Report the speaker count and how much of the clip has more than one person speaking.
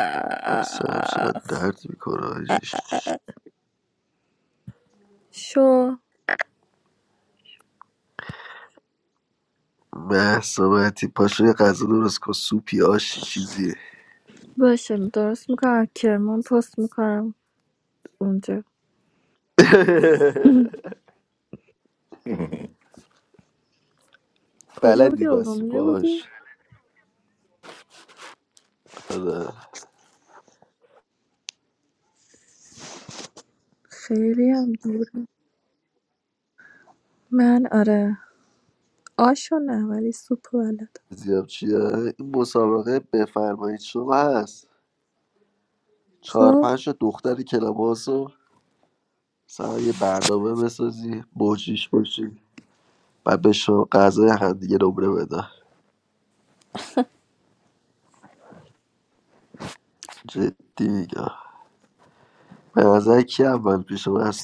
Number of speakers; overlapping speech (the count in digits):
2, about 3%